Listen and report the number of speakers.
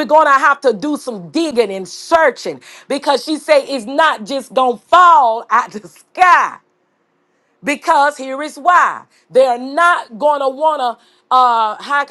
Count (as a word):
one